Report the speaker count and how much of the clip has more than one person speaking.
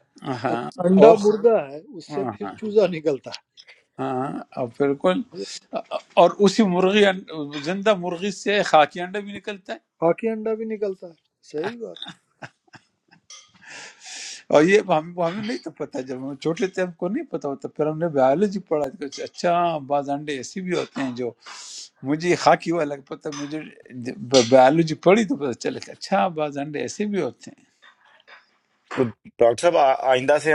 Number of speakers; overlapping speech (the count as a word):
three, about 3%